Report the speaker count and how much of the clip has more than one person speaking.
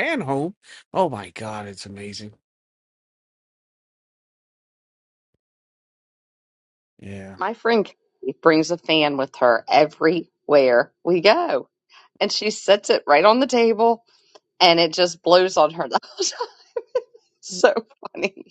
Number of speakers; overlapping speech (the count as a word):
two, no overlap